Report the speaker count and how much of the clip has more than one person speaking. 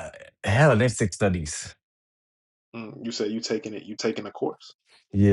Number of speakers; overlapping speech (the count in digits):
2, no overlap